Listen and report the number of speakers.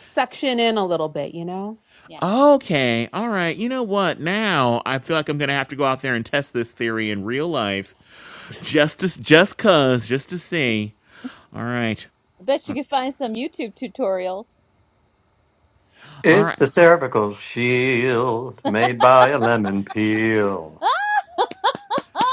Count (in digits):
4